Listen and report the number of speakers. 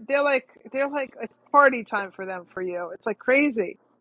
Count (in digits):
1